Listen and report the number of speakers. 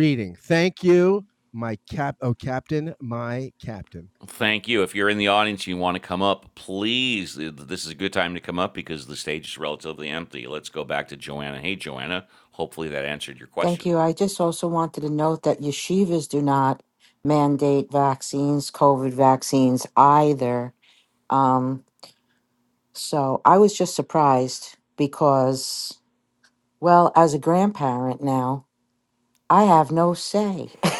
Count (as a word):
three